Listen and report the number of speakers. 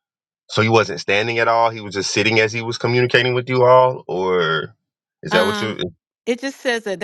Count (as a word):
two